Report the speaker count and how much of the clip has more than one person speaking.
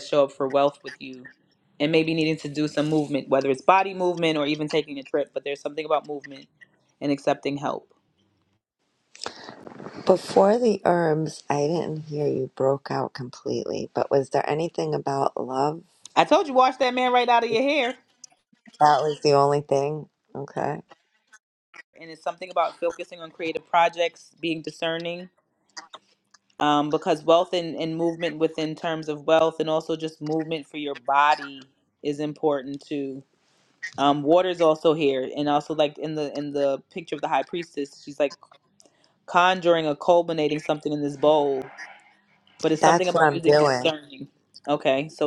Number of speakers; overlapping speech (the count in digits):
2, about 3%